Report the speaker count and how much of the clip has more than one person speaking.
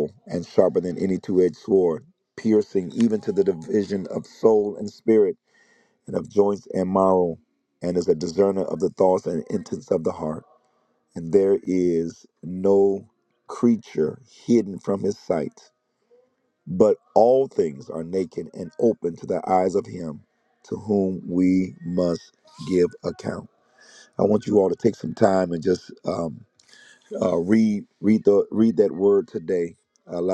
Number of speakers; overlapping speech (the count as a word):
one, no overlap